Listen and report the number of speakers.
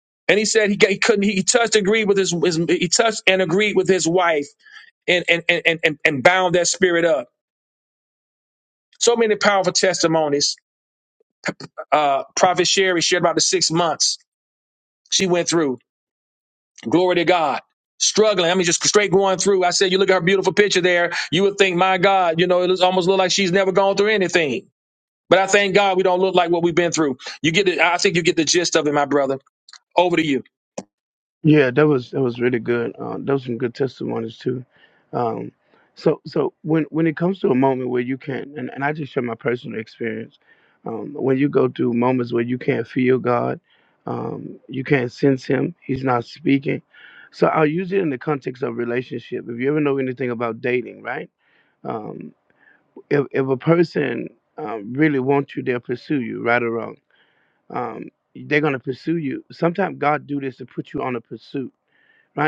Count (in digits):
2